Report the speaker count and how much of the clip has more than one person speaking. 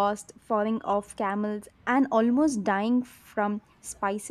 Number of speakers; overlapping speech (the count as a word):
one, no overlap